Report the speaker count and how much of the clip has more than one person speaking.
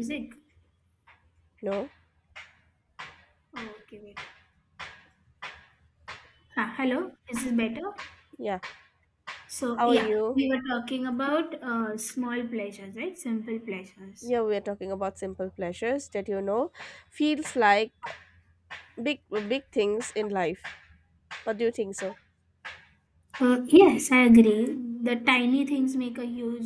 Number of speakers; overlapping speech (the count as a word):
two, about 2%